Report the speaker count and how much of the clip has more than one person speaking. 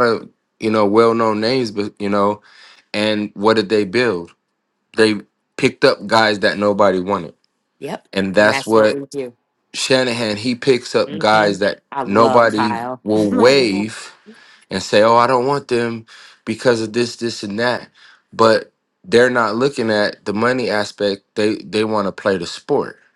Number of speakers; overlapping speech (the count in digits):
2, about 13%